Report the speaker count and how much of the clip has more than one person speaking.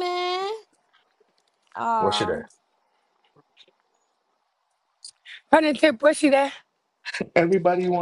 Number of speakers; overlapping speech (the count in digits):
3, about 5%